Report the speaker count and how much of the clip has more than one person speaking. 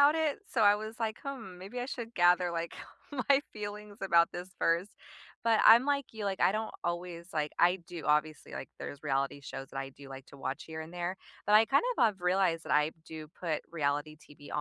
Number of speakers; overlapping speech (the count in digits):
1, no overlap